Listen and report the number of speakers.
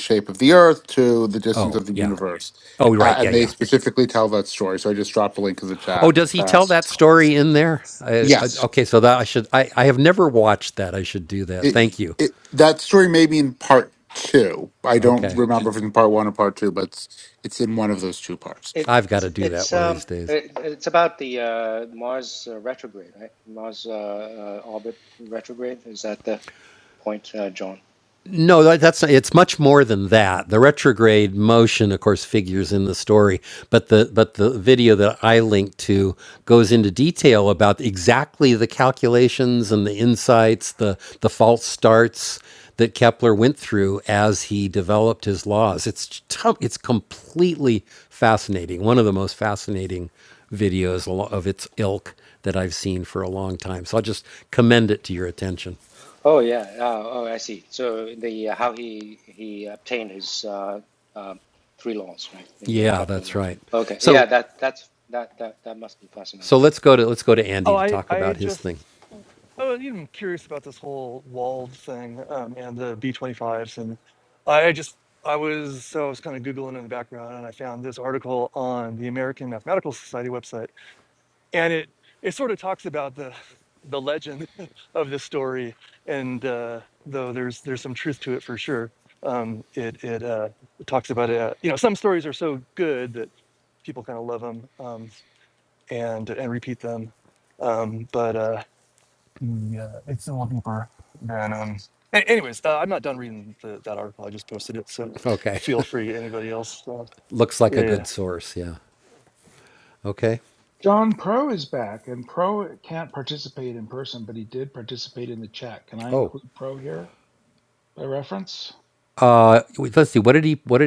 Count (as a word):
five